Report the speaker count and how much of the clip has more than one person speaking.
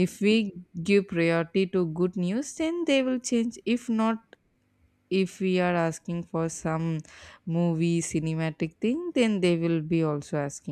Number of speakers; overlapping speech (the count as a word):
one, no overlap